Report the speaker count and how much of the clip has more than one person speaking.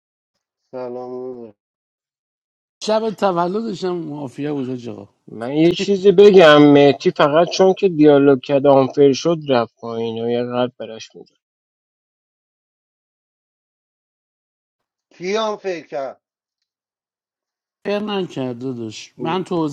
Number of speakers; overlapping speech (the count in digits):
3, about 1%